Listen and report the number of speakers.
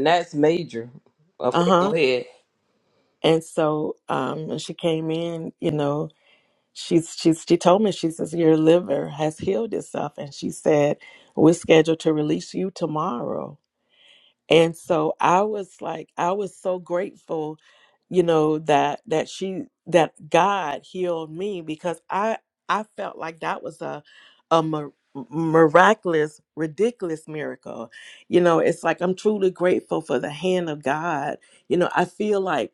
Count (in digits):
2